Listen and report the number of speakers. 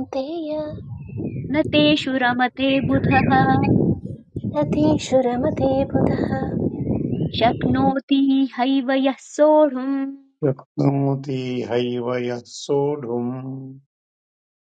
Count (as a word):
three